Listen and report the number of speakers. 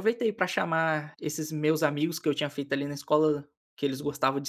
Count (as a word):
one